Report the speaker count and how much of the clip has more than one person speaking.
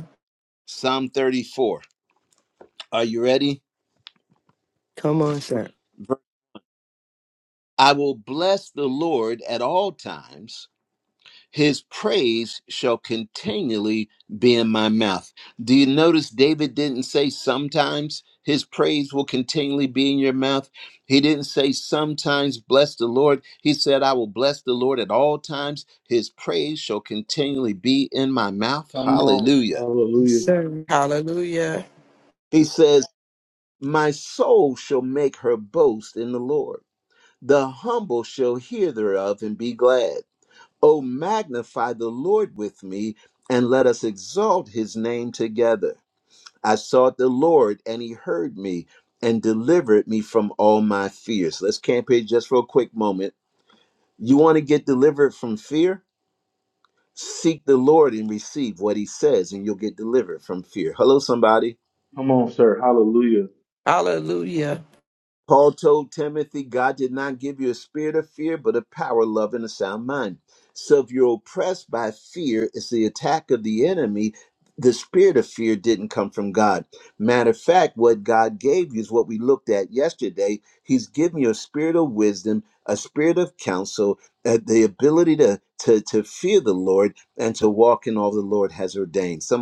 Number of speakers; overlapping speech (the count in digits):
4, under 1%